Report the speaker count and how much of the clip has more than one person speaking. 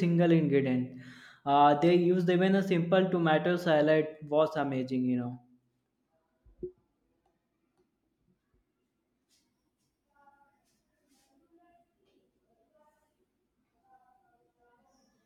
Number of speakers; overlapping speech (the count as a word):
one, no overlap